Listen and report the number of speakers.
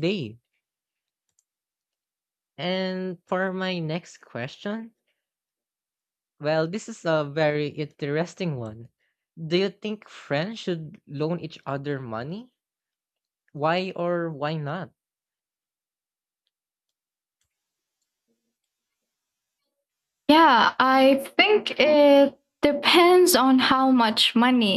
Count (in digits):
2